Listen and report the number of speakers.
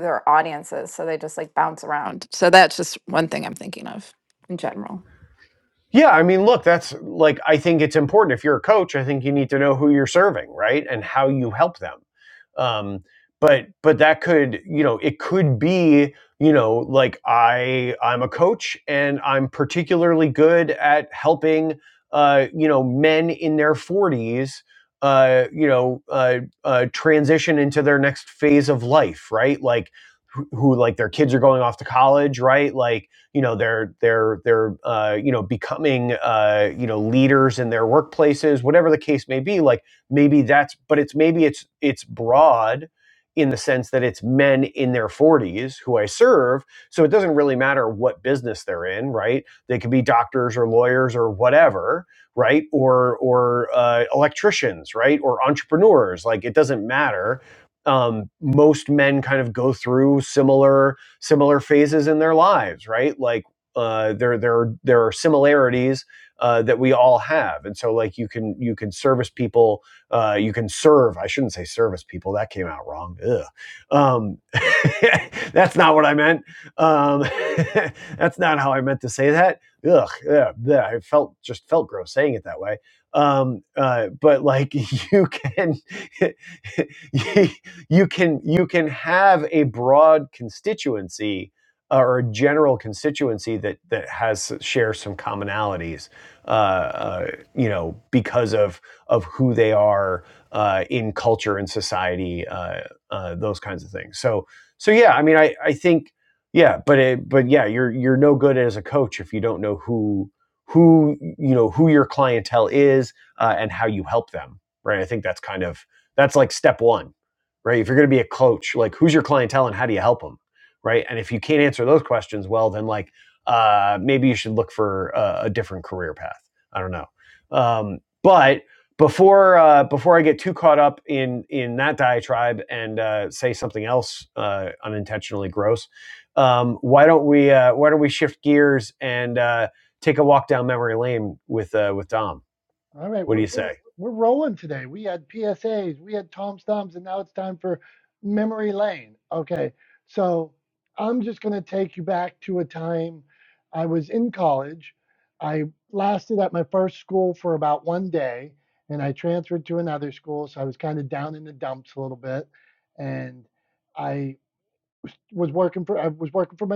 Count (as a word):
three